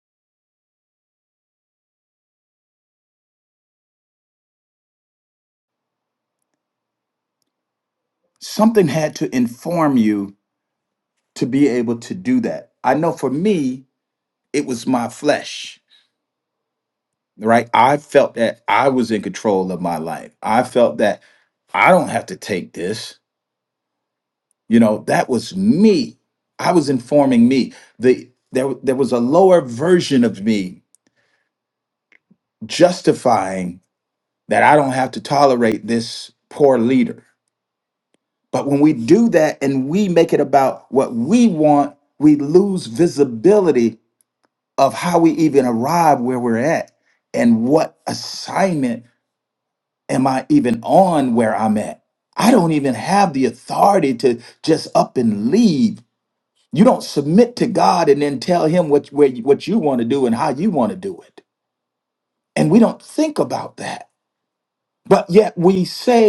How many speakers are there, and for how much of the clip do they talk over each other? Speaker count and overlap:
one, no overlap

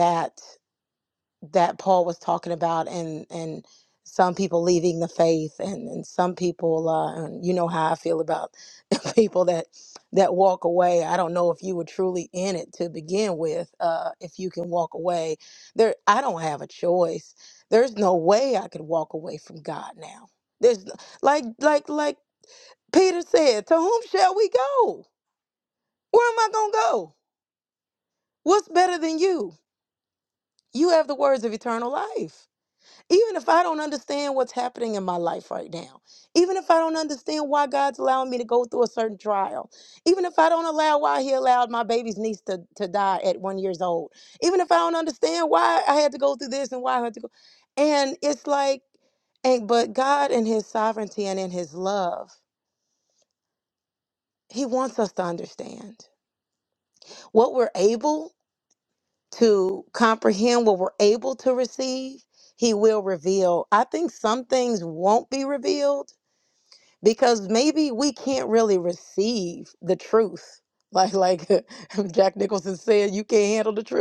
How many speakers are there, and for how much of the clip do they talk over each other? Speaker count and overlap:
one, no overlap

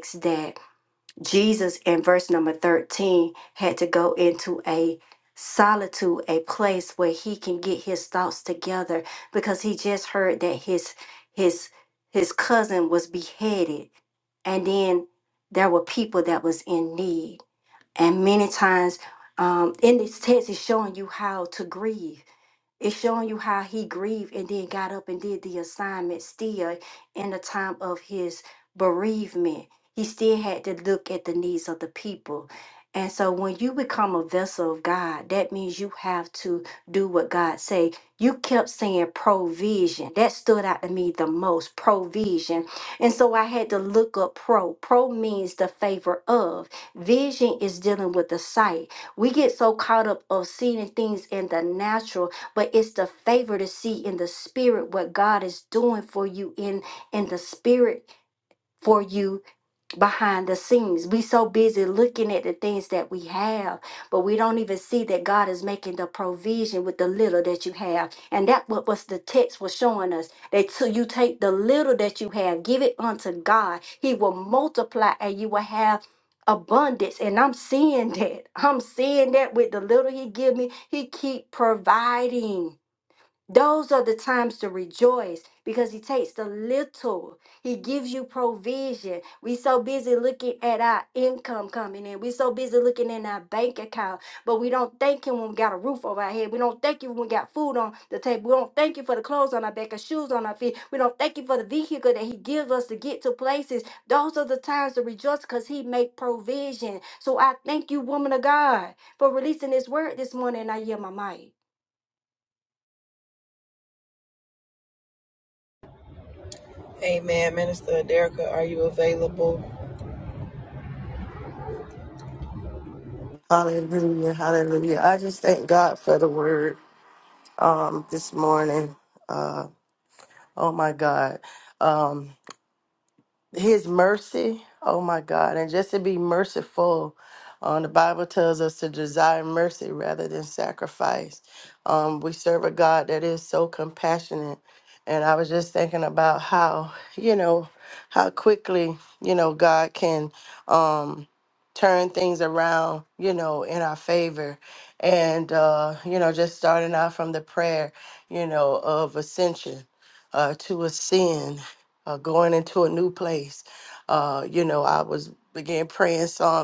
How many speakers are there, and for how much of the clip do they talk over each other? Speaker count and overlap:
three, no overlap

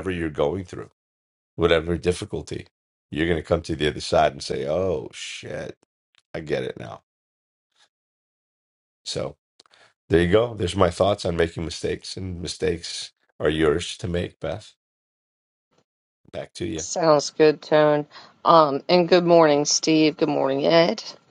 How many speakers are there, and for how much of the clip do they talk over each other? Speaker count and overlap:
two, no overlap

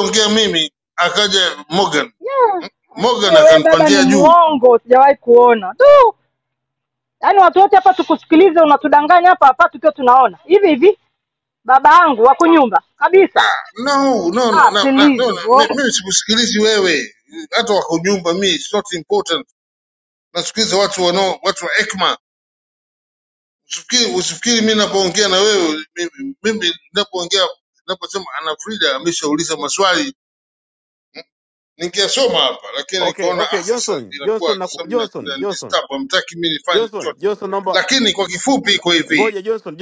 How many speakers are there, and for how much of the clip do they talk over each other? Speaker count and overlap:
three, about 15%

